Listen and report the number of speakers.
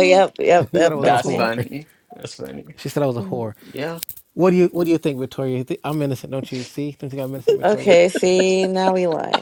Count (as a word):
three